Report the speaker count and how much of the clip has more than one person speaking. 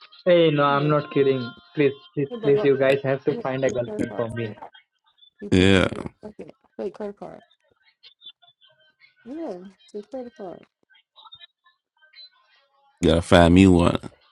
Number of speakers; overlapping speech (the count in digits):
3, about 14%